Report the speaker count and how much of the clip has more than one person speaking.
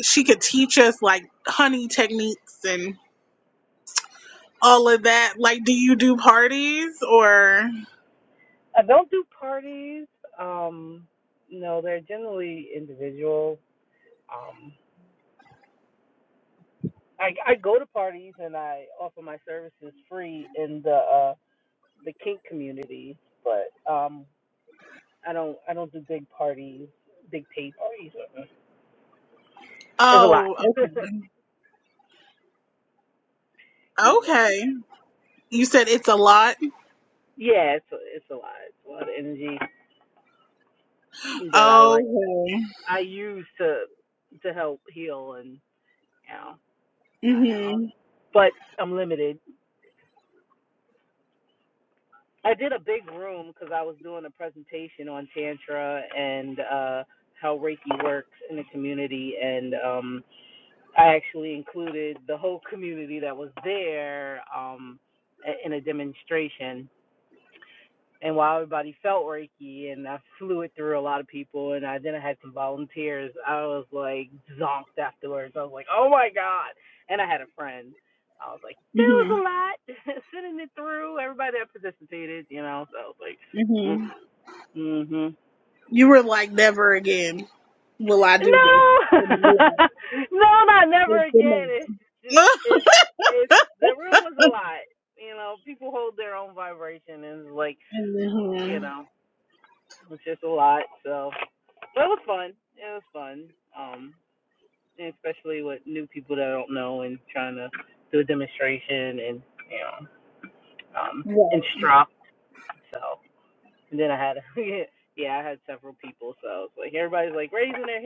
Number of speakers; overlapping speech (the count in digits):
2, about 3%